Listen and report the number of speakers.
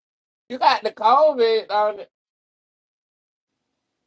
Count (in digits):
1